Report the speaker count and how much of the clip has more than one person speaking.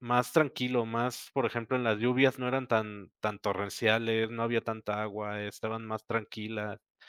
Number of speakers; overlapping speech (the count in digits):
1, no overlap